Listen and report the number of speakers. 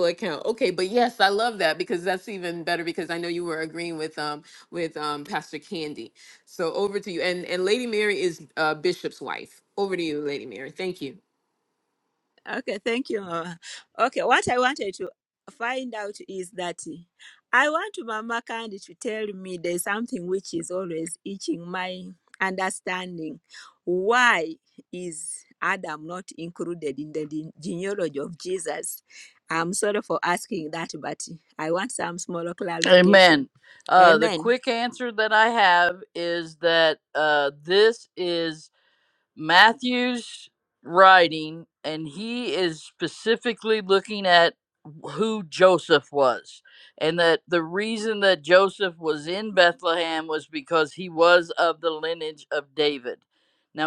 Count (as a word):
three